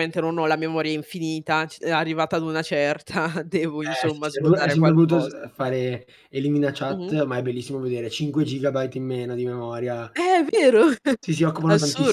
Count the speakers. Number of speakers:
2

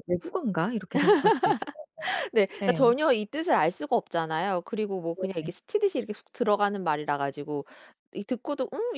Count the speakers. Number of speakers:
2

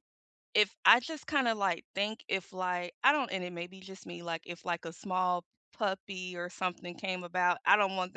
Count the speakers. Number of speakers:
1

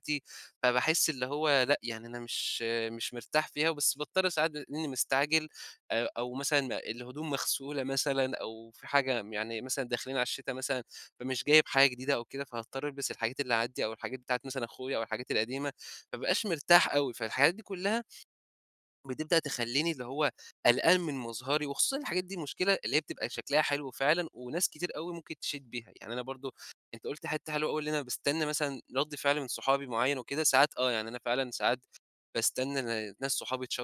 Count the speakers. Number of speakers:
1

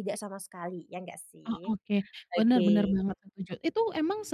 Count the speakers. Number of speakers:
2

